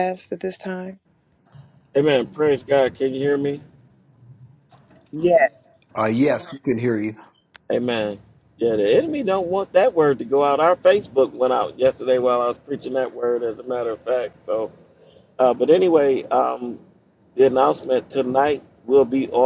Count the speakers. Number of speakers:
3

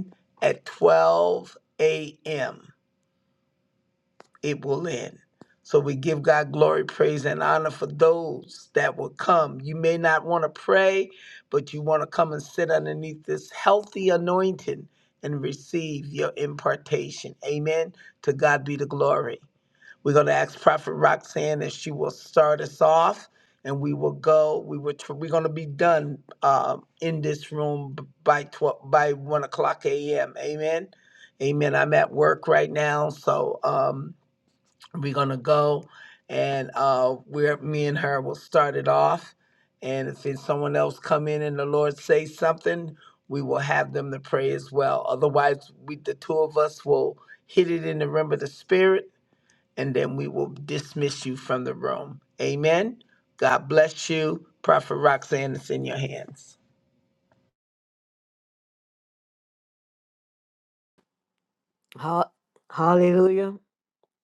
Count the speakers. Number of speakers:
2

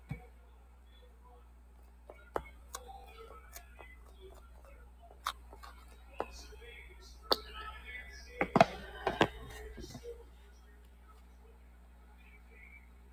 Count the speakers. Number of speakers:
0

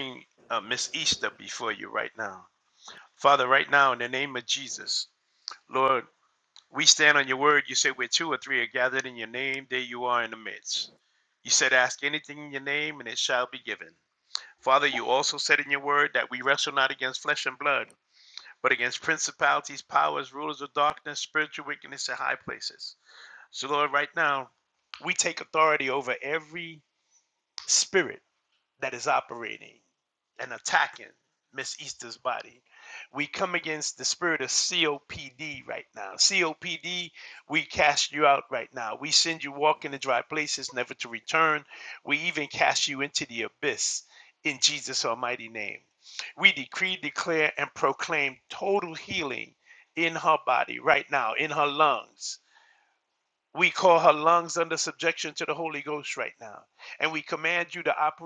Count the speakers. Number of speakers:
1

